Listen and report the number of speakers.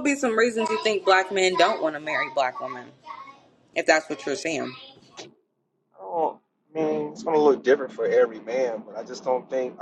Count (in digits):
2